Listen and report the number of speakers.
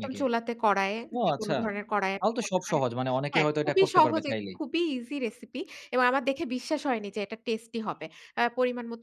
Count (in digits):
2